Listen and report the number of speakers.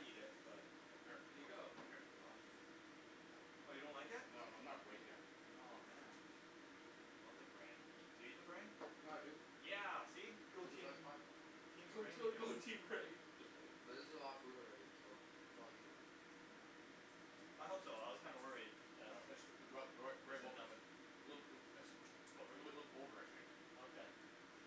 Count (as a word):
four